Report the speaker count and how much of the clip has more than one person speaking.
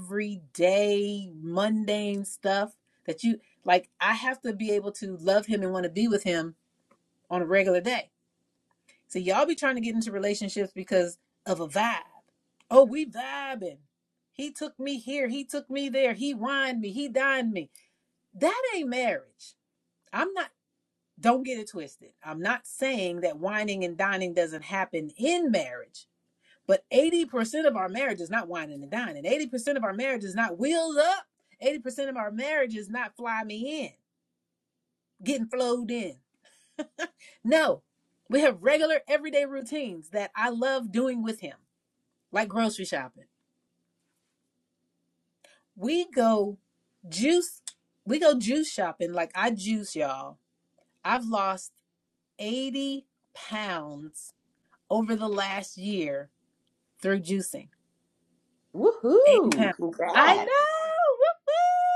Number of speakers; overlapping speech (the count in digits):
2, about 1%